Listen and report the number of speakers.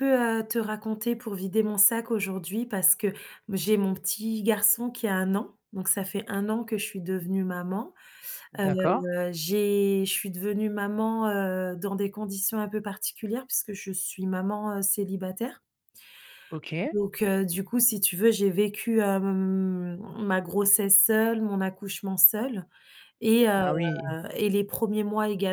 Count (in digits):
2